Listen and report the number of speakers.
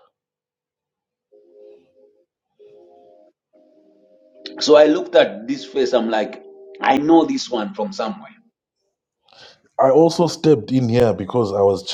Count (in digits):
2